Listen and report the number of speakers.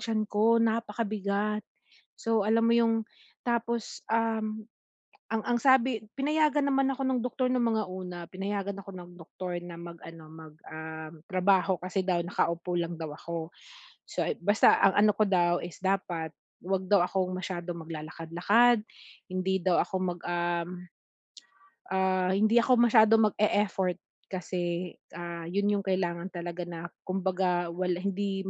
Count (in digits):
1